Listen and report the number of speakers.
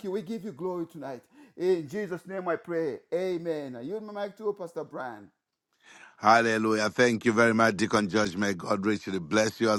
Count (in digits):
2